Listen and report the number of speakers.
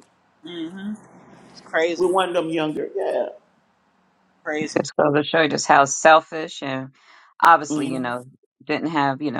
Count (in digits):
3